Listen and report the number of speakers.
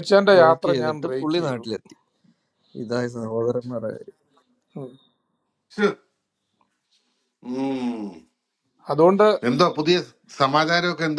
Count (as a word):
three